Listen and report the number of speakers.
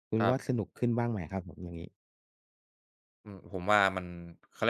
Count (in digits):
2